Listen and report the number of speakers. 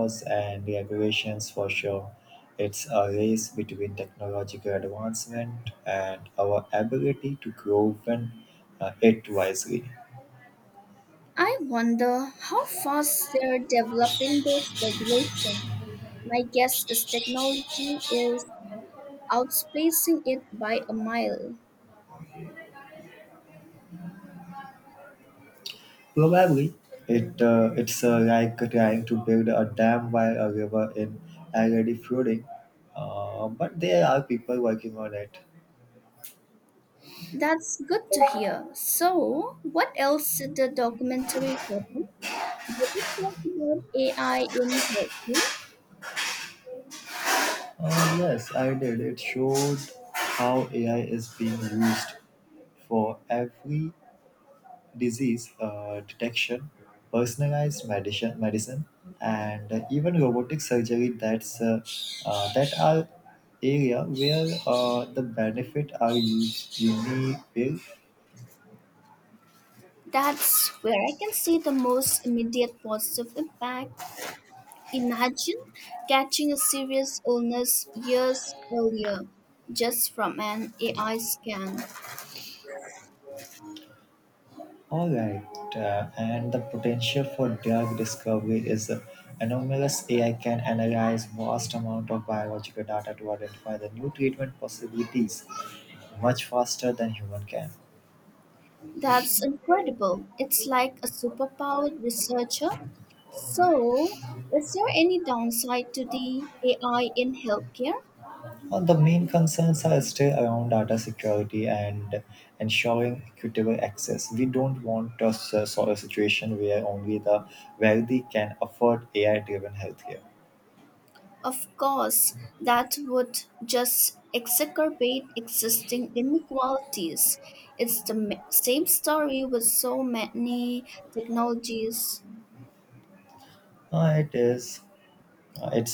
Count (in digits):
2